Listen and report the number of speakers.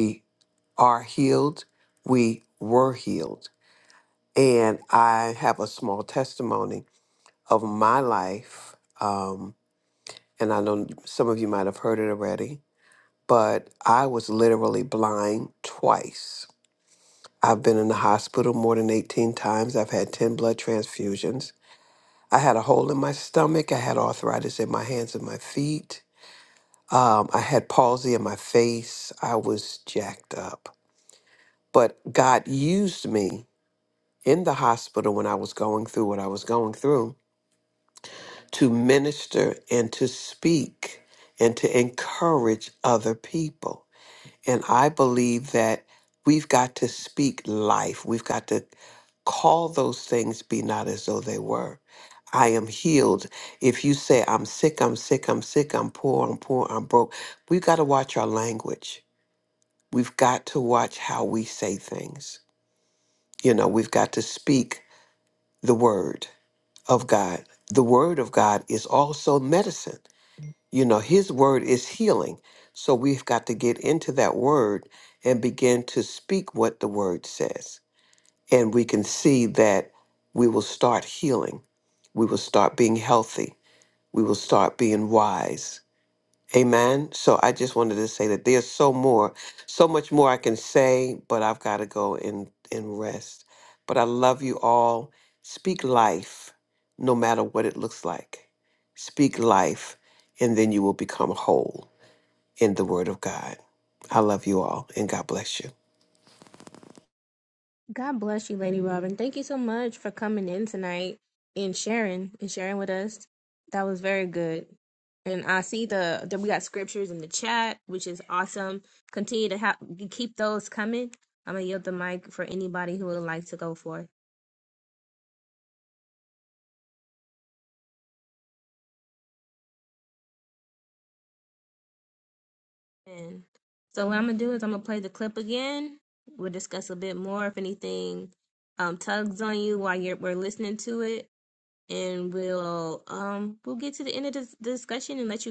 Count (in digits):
2